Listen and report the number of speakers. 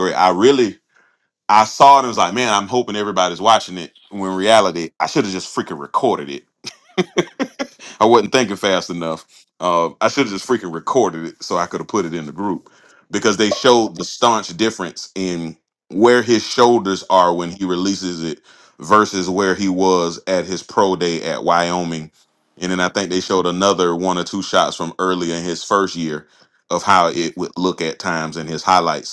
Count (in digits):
1